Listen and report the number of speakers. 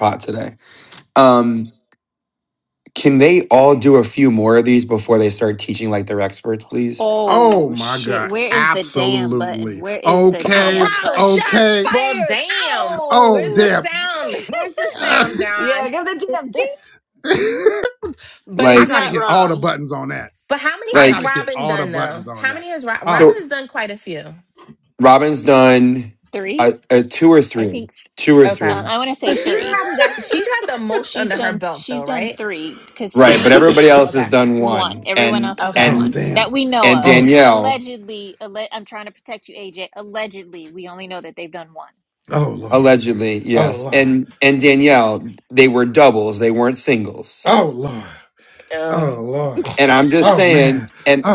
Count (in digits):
5